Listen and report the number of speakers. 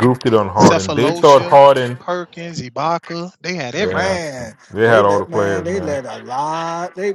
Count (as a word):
three